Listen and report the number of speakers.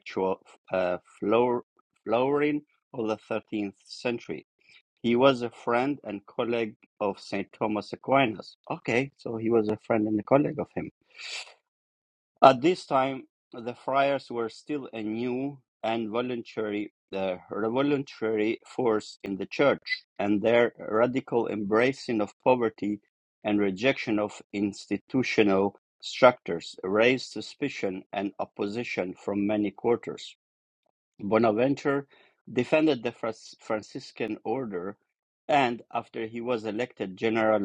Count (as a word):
one